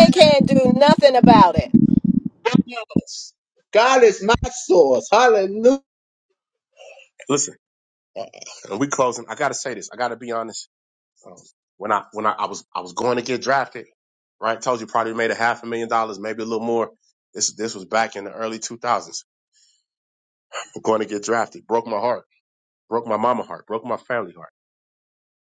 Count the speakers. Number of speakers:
3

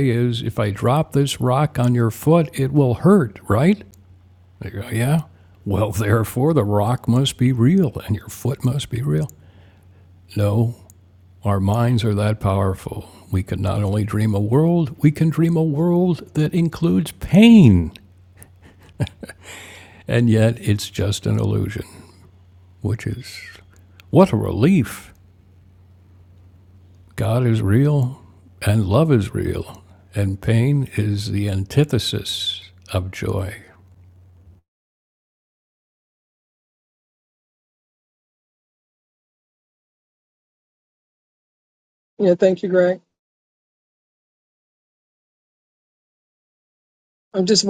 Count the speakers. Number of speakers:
2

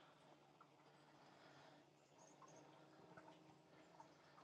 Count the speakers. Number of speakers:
0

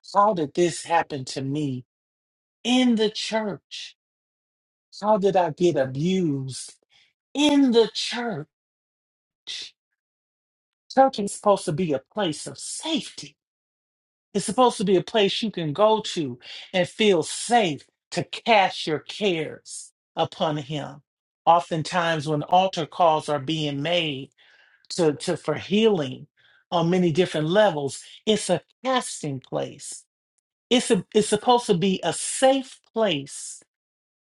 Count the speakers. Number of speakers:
1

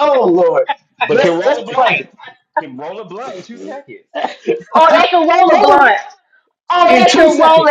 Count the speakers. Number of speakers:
3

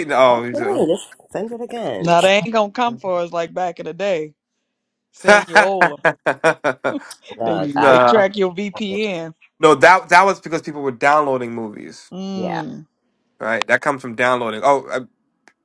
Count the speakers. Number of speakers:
3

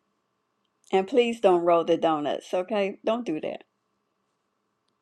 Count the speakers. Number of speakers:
1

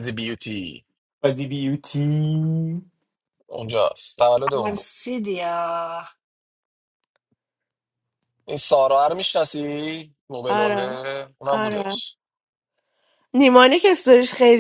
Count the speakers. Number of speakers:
4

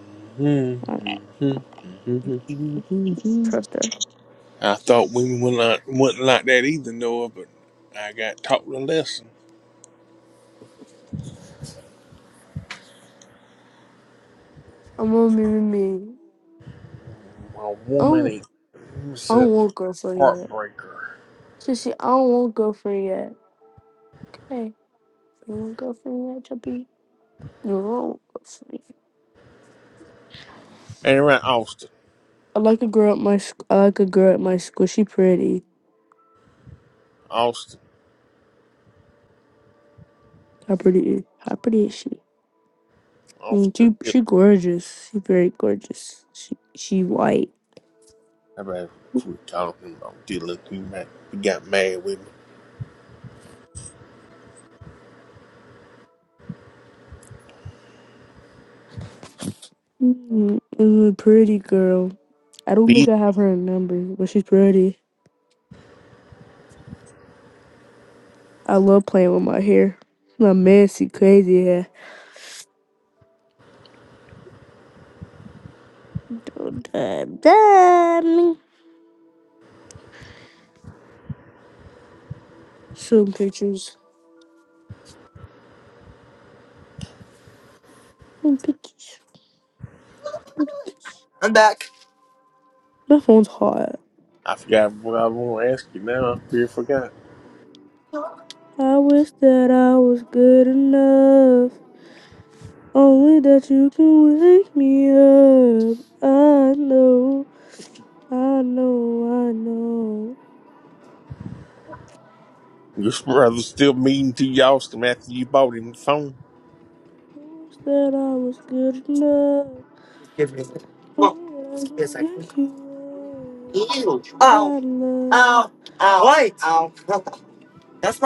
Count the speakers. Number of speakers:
3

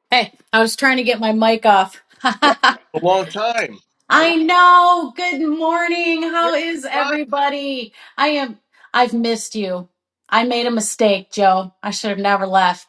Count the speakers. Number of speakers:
2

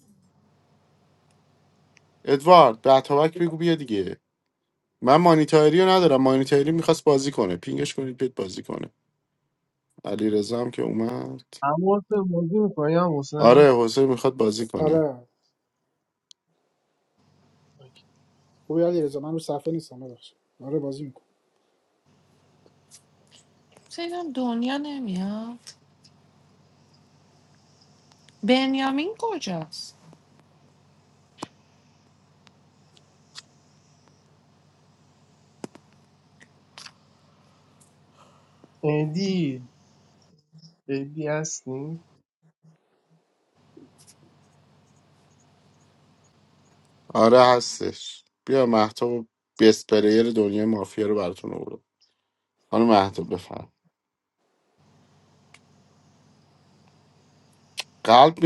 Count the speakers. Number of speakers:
4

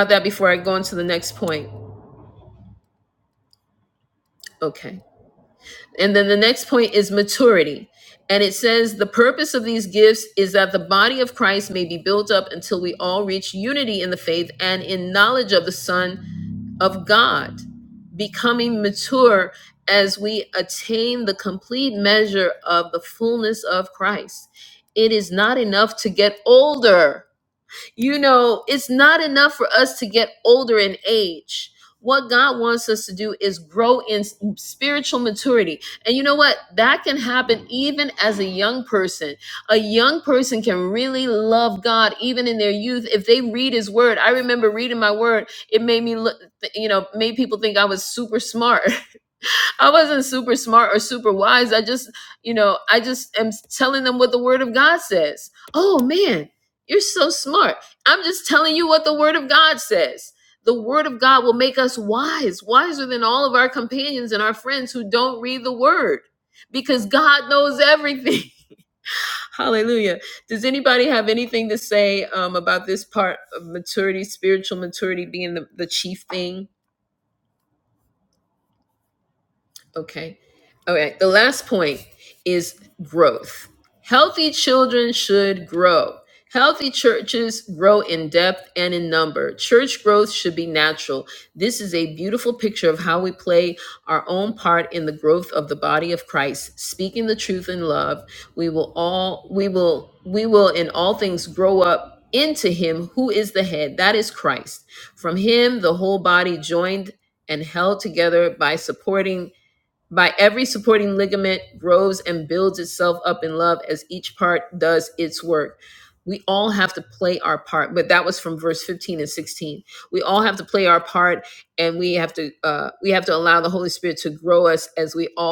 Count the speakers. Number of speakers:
1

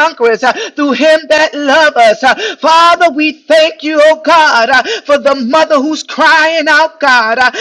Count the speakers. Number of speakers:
1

